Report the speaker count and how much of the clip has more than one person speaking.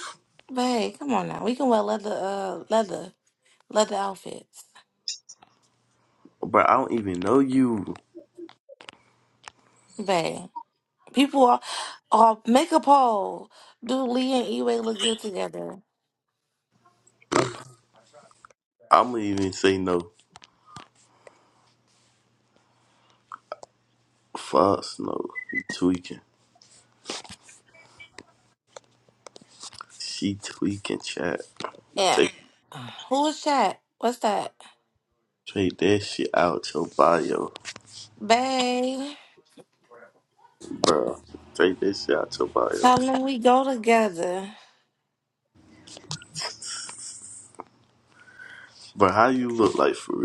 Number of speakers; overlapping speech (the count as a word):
two, under 1%